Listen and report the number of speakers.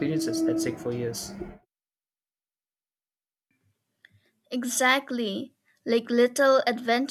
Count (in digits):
2